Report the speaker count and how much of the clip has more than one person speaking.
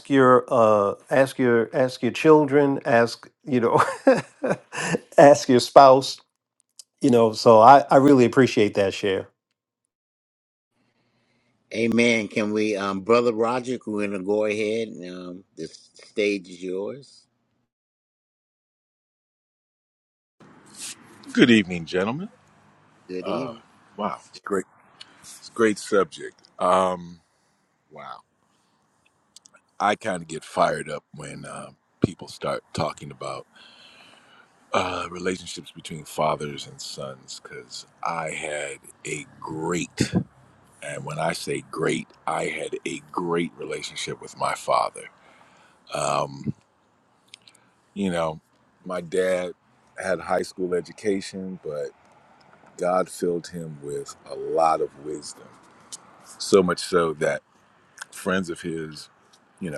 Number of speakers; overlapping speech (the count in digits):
3, no overlap